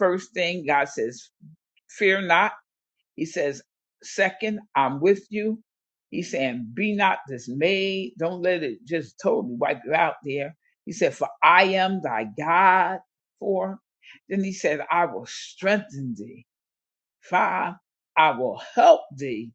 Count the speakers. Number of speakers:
1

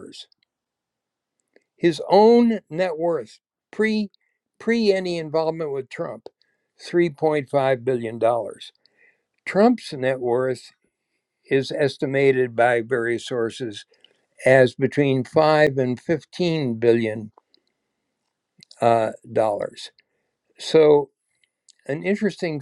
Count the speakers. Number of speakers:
1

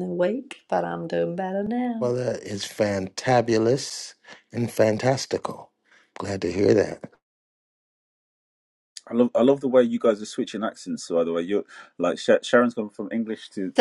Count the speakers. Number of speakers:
3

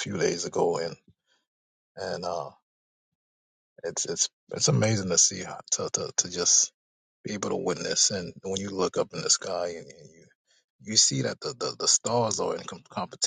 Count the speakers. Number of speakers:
1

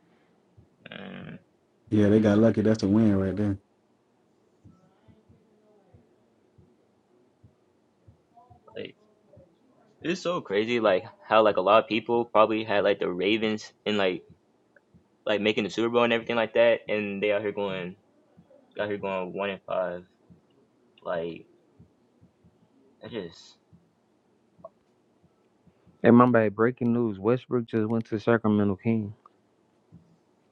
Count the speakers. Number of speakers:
3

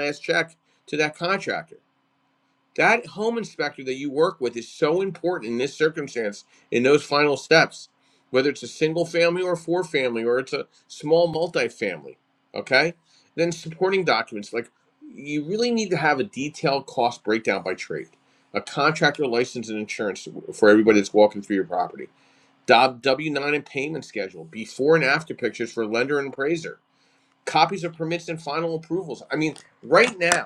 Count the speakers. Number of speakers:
1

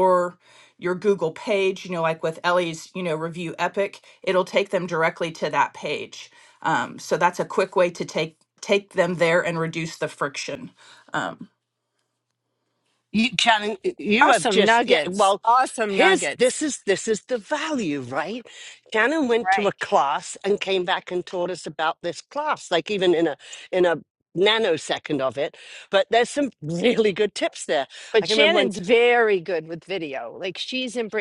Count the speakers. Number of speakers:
3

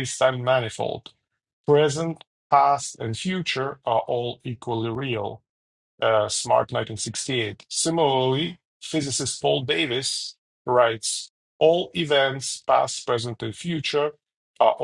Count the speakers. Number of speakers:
1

